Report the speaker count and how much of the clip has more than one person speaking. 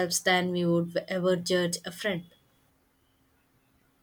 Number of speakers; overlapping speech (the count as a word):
one, no overlap